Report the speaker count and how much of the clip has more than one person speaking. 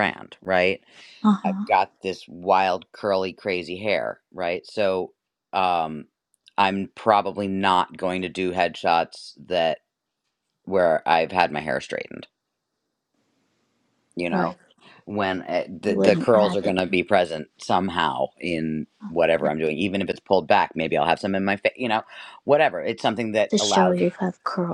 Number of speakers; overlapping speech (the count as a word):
two, about 7%